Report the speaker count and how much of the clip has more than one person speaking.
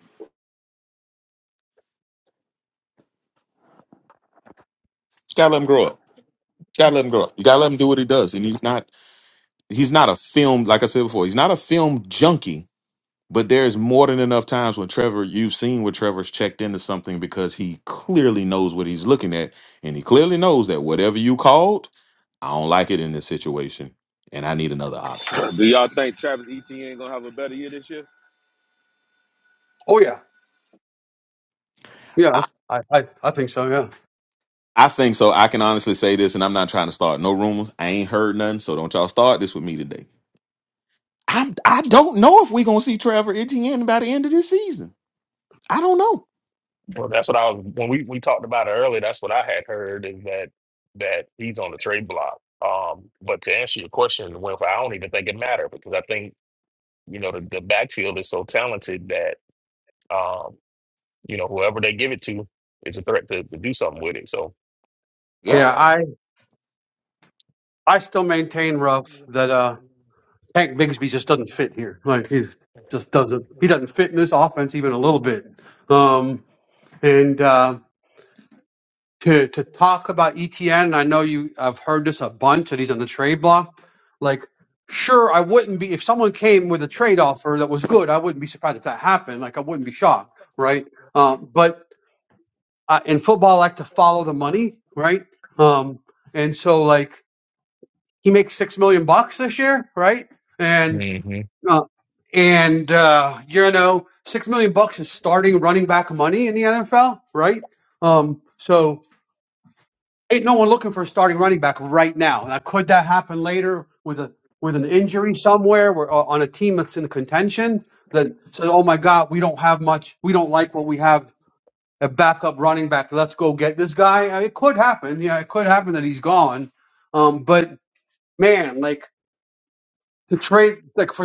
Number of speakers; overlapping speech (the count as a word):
four, under 1%